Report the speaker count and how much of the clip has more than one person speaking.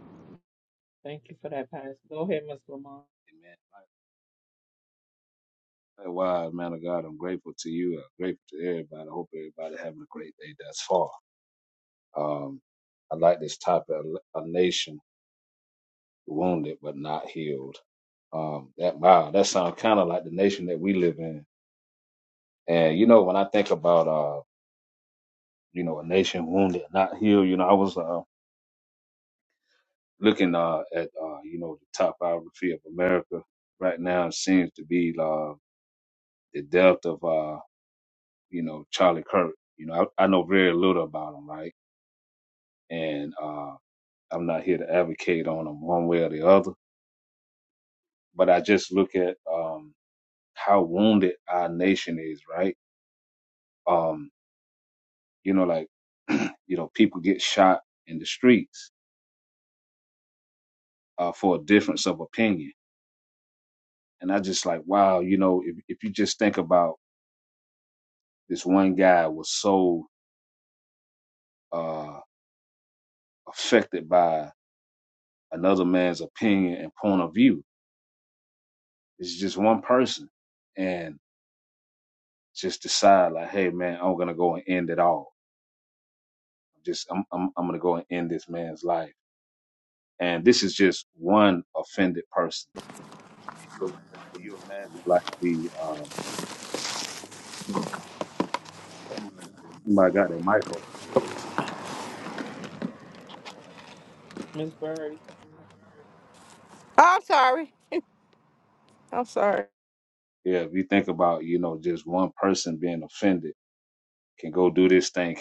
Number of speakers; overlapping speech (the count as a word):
three, no overlap